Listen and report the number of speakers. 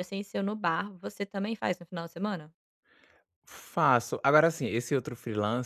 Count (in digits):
2